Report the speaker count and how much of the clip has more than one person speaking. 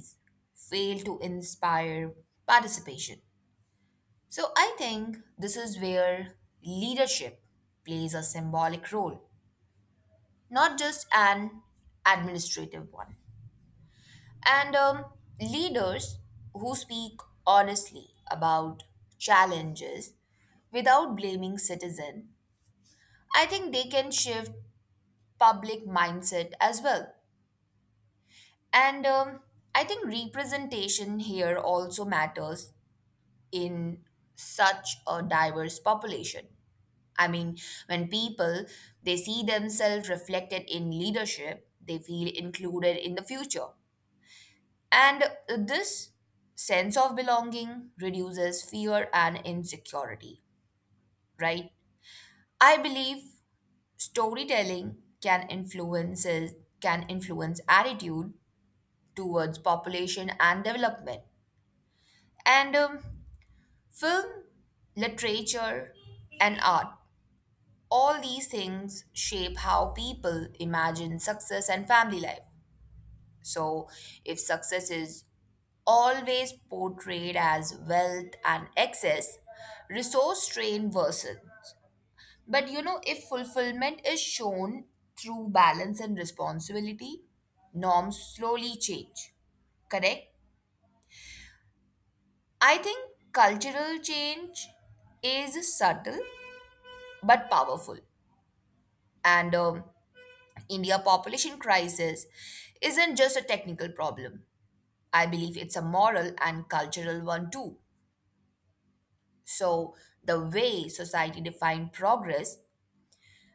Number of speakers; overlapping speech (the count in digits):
1, no overlap